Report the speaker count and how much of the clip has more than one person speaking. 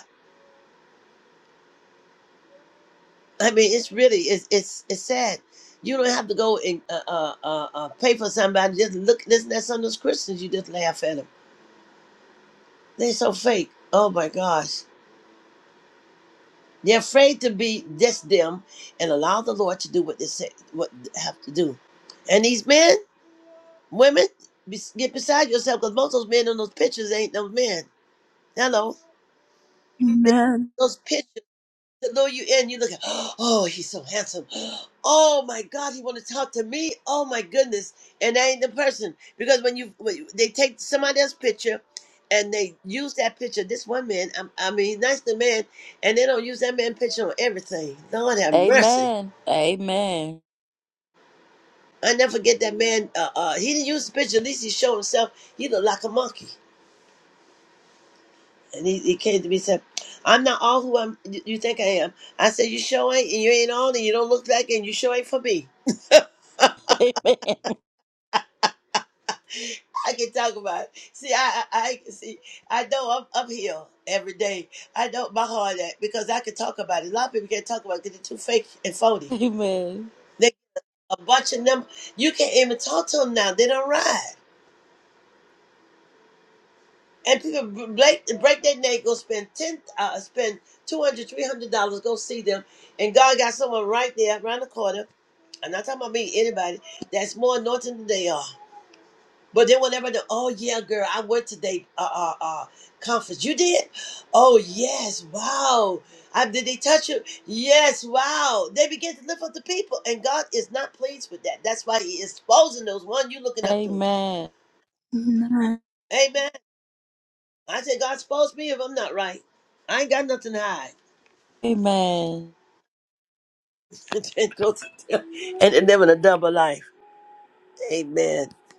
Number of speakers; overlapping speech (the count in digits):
3, about 1%